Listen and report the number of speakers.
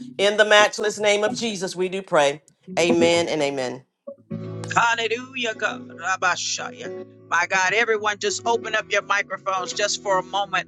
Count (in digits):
2